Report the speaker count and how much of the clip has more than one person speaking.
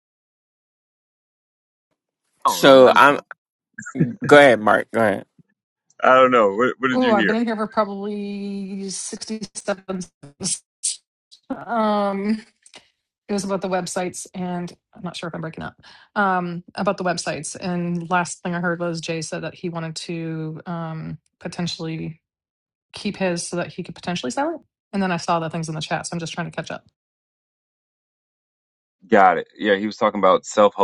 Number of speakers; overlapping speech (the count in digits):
3, about 3%